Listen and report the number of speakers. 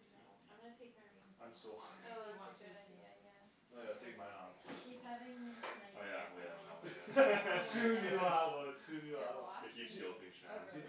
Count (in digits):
4